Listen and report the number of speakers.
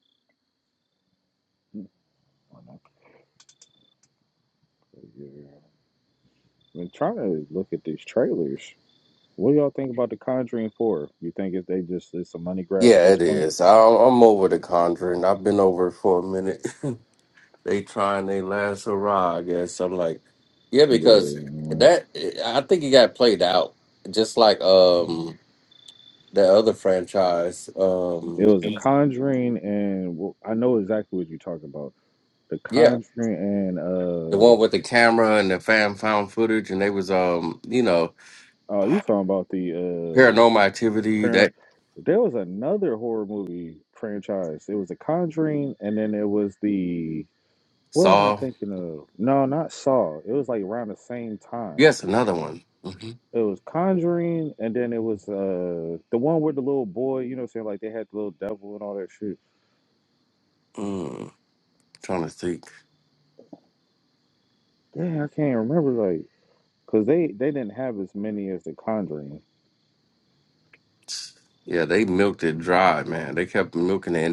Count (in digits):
2